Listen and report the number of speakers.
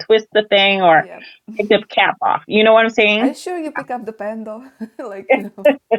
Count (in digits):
2